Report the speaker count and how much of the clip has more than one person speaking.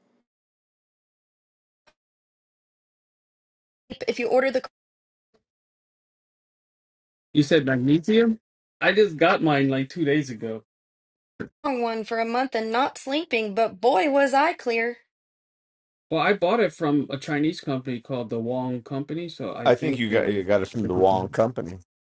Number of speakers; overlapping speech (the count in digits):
3, about 3%